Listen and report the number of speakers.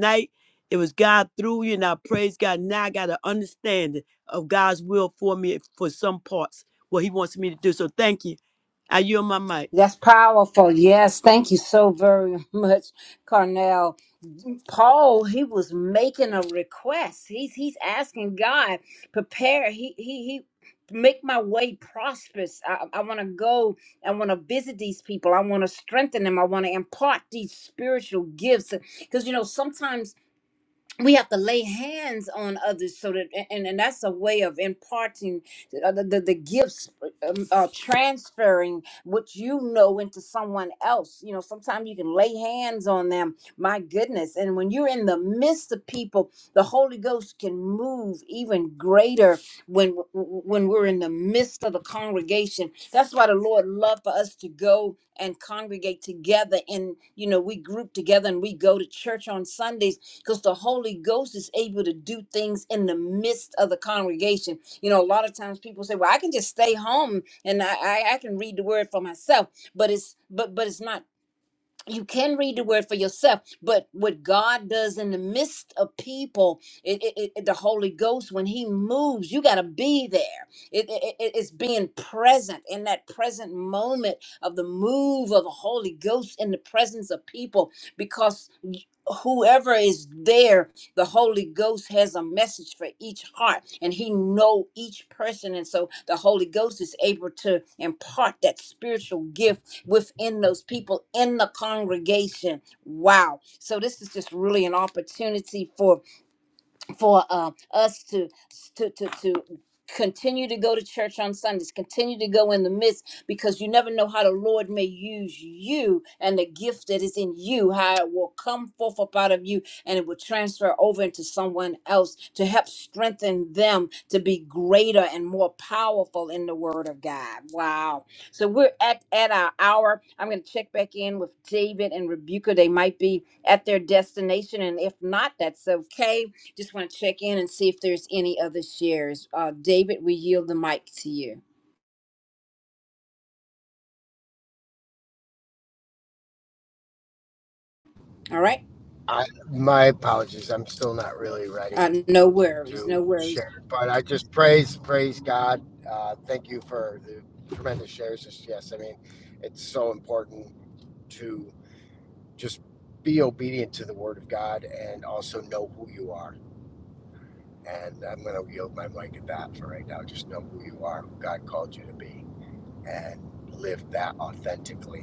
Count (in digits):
3